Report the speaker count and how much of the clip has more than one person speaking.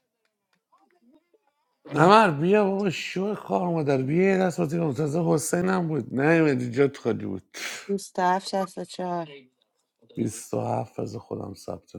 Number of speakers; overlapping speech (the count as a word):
two, no overlap